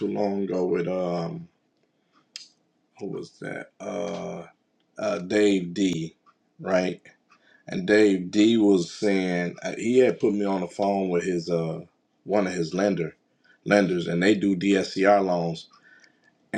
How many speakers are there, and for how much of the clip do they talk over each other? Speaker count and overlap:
one, no overlap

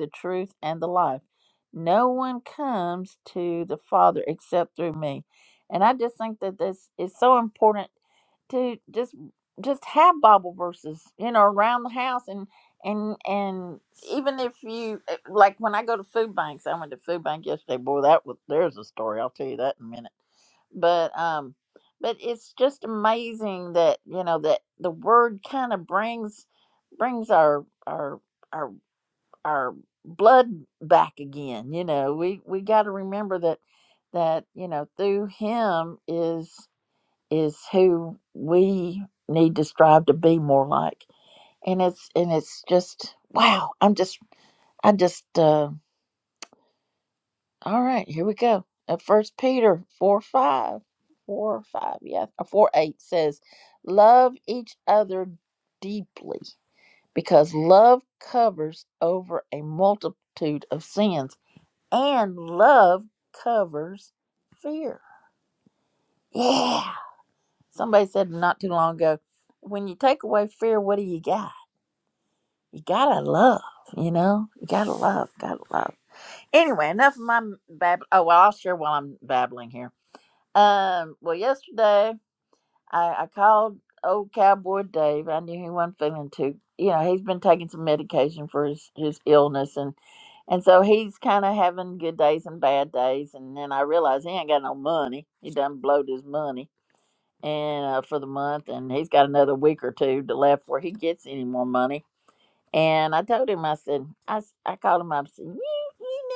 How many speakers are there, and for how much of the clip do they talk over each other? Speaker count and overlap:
one, no overlap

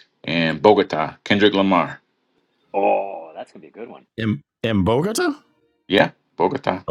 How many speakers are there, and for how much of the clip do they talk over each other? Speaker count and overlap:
three, no overlap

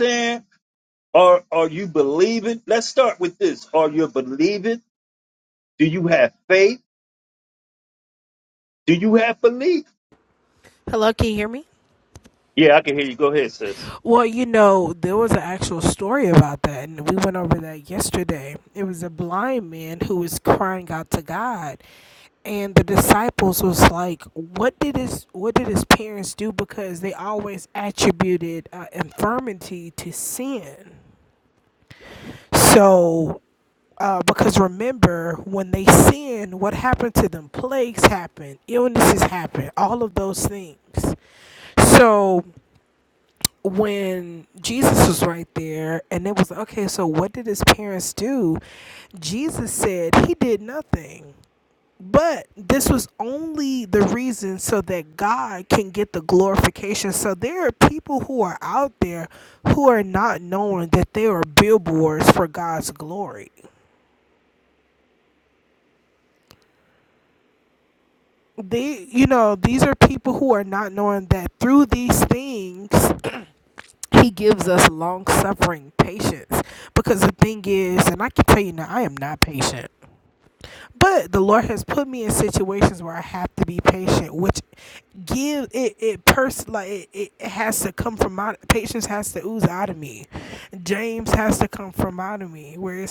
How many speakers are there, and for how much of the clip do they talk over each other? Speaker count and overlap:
two, no overlap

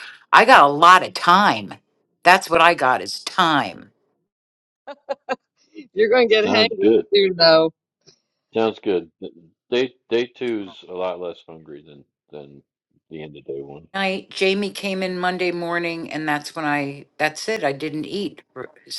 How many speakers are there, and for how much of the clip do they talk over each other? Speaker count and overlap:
three, about 3%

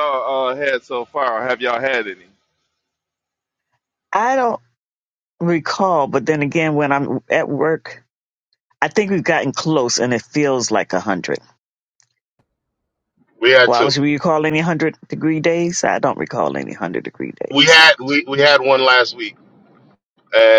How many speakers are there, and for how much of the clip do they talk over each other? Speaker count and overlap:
three, about 2%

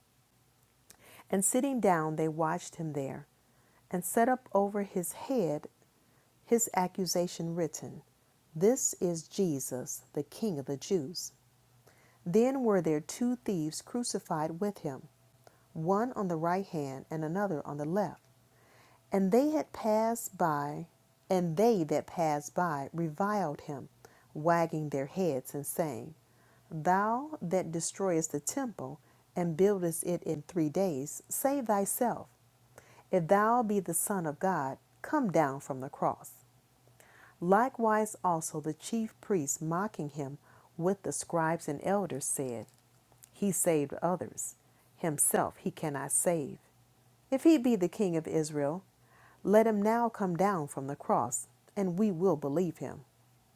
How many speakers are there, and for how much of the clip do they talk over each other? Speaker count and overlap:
one, no overlap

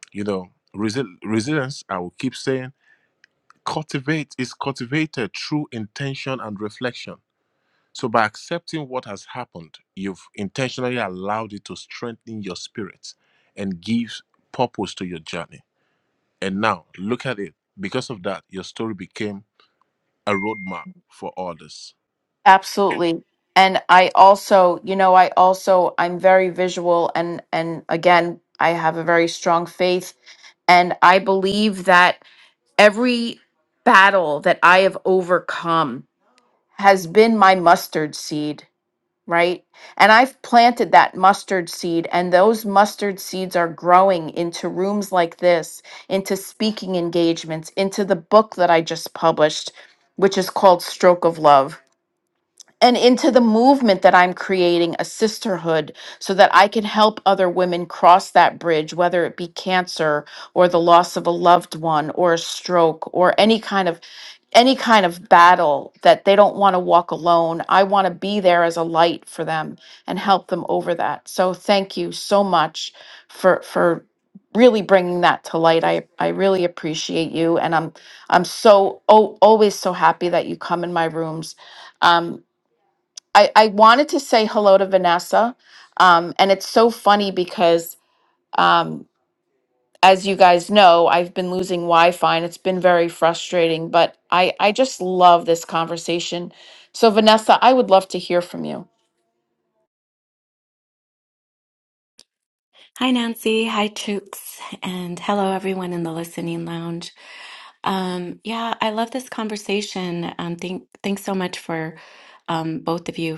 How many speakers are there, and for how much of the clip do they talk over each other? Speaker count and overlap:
three, no overlap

